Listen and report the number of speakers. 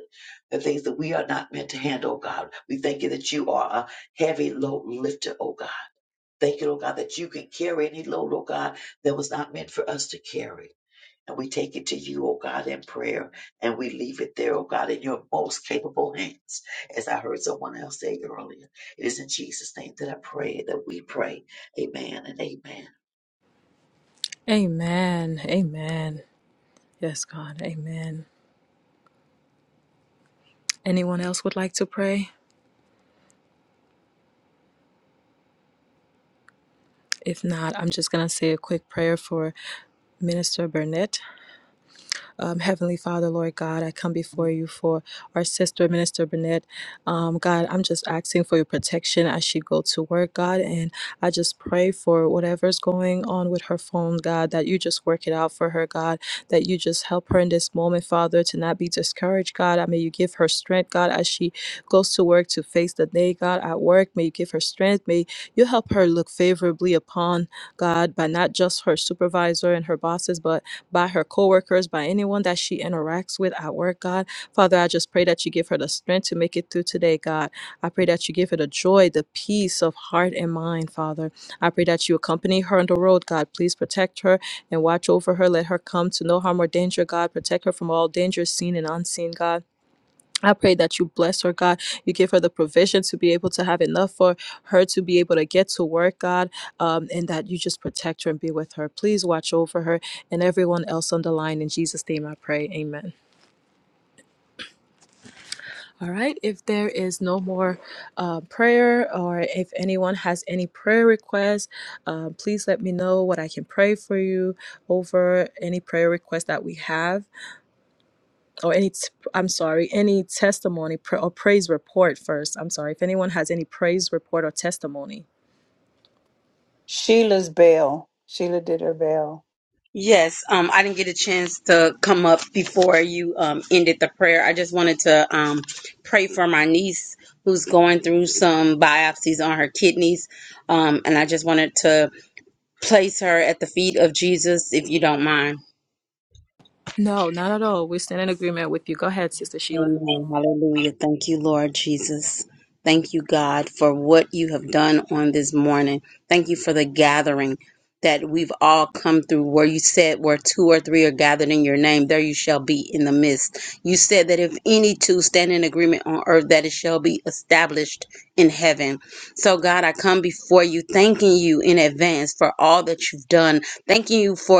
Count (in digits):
4